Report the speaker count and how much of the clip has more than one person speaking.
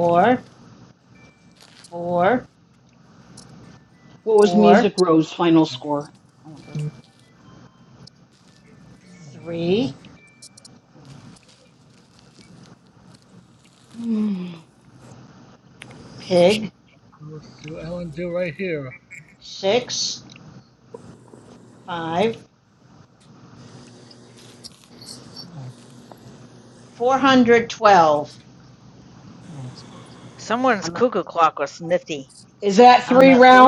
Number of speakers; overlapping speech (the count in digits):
4, about 4%